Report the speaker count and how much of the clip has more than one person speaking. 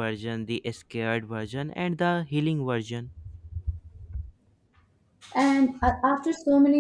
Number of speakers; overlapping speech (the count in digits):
2, no overlap